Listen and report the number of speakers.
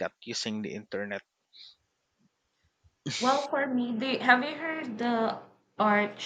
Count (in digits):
2